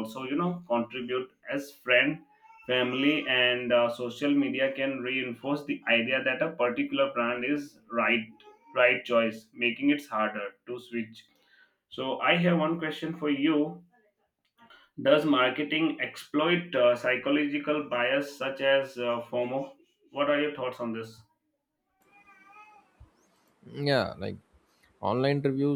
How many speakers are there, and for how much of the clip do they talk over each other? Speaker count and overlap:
two, no overlap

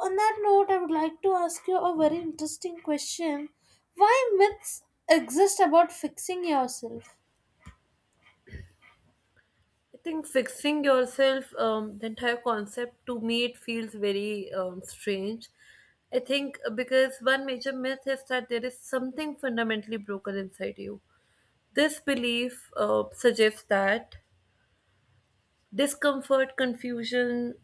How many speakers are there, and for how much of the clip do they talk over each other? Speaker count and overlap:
two, no overlap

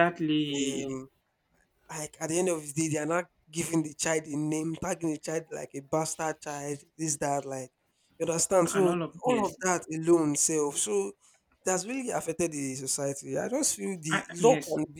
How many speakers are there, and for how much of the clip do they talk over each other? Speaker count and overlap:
two, about 10%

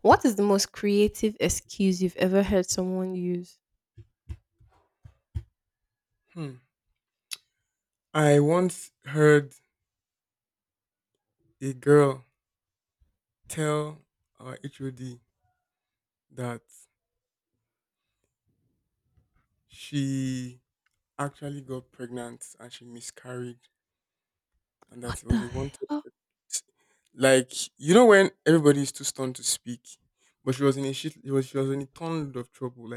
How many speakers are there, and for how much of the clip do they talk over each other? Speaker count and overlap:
two, about 2%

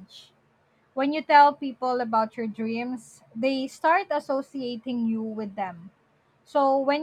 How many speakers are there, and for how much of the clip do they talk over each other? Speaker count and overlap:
one, no overlap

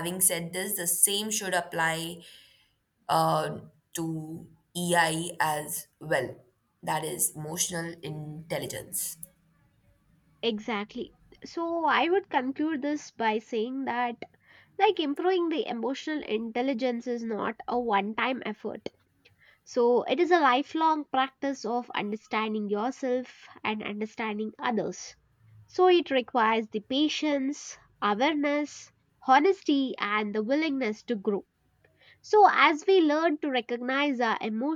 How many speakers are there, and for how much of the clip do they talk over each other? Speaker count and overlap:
two, no overlap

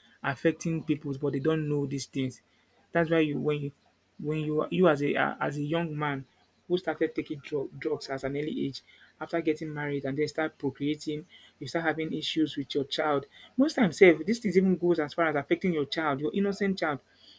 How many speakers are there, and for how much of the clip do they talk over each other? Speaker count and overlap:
one, no overlap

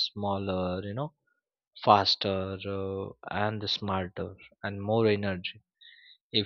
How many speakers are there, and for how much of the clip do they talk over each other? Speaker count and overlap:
one, no overlap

